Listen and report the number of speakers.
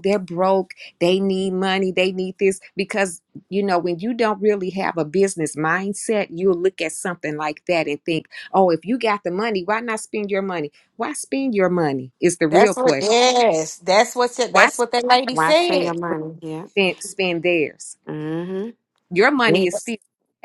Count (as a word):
three